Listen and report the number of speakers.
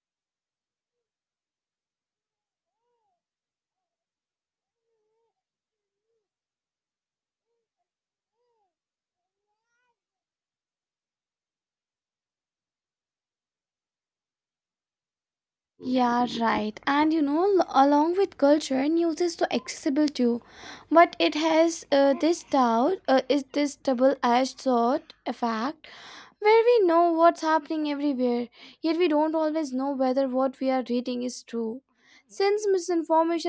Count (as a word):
one